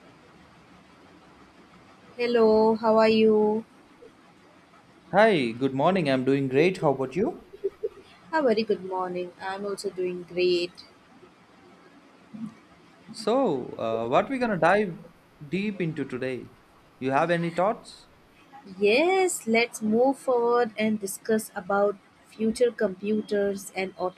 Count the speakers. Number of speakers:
two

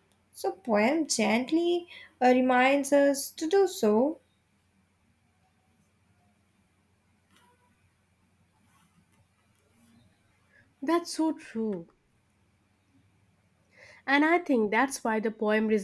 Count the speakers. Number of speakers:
two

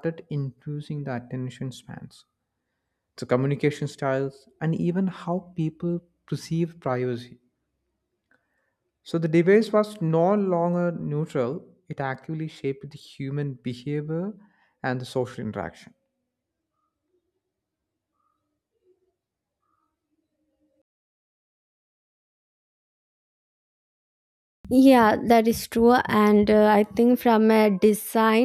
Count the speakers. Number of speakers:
two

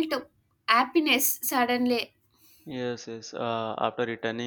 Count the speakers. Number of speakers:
two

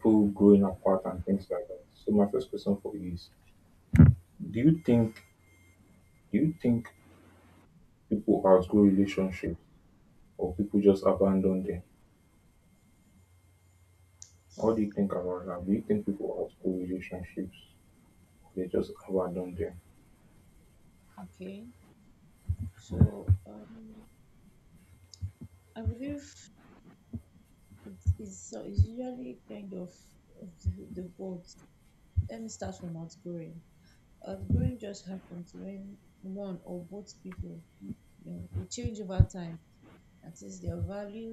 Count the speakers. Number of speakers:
two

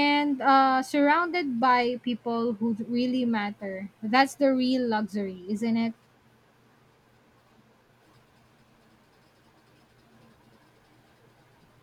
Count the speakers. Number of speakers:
one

